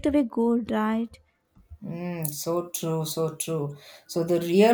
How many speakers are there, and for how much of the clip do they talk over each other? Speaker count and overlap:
2, no overlap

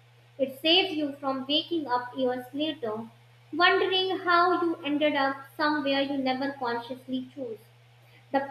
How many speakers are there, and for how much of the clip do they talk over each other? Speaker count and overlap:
1, no overlap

